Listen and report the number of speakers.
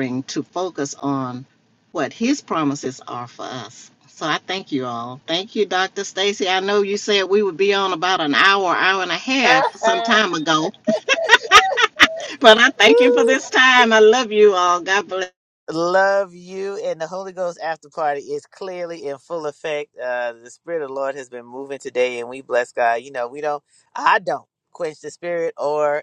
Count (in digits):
2